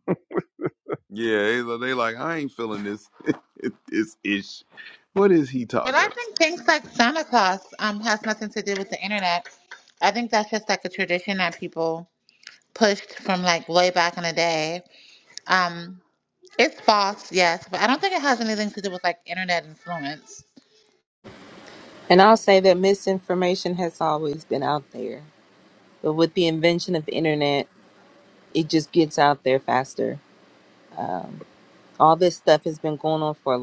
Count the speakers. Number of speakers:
three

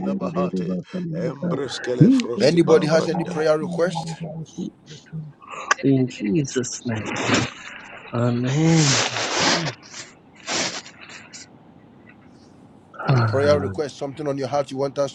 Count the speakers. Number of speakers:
three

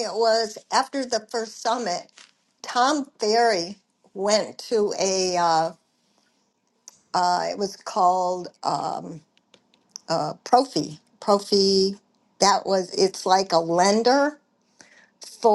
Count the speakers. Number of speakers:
one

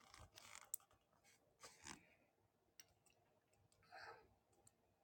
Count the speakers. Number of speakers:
zero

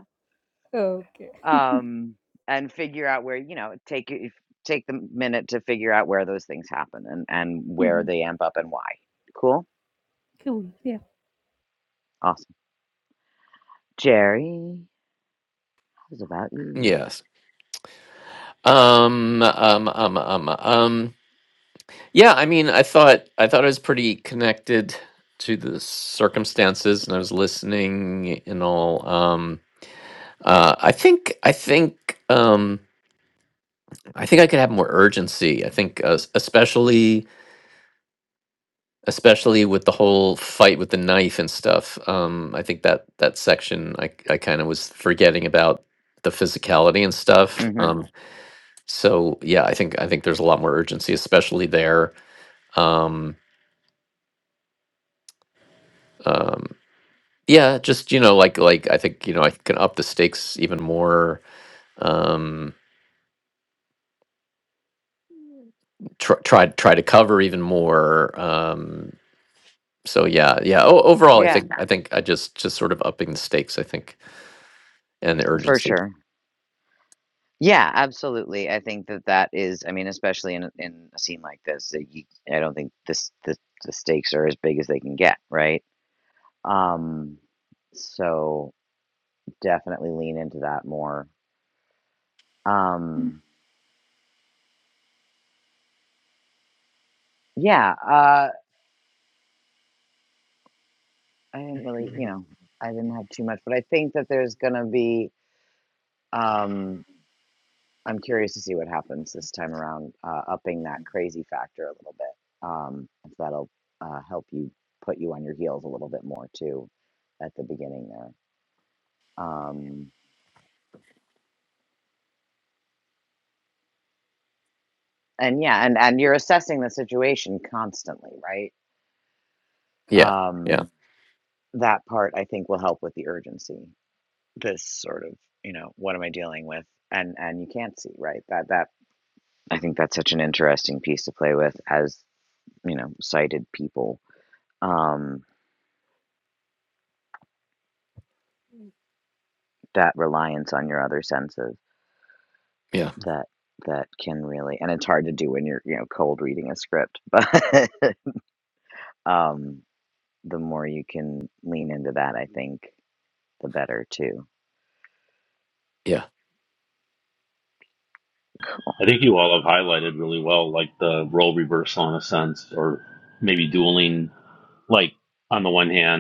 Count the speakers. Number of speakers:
four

